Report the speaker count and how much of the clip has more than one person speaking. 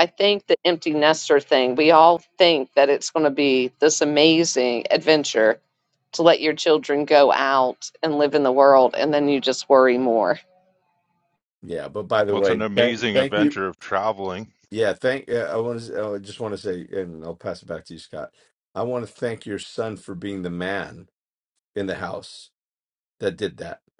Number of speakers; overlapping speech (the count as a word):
three, about 5%